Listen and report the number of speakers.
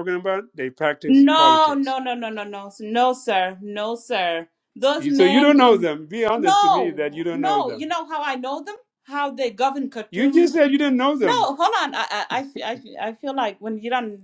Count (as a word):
two